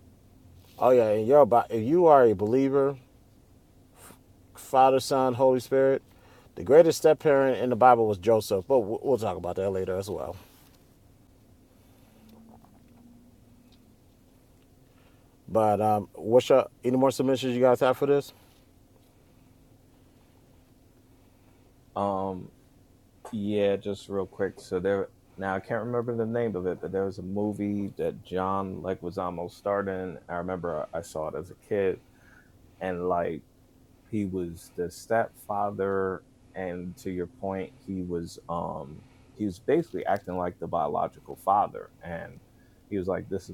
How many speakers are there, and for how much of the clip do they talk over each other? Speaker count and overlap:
two, no overlap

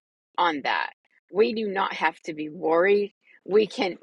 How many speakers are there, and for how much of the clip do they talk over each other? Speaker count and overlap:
one, no overlap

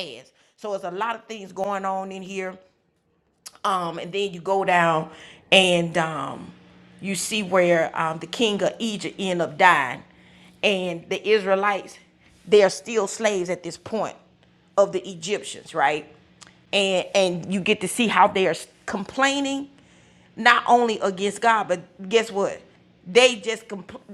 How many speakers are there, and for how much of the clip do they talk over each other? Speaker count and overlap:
one, no overlap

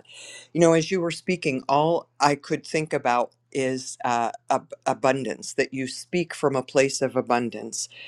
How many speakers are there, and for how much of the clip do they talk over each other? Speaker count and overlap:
one, no overlap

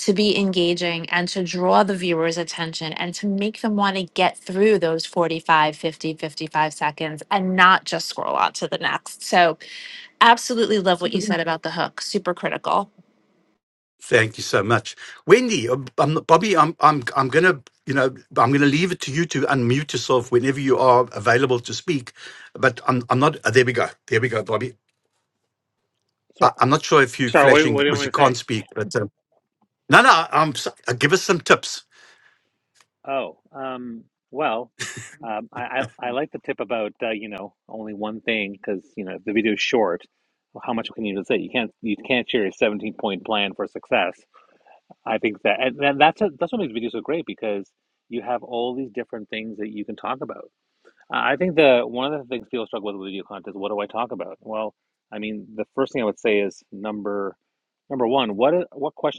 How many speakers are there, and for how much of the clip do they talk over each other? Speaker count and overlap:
three, about 2%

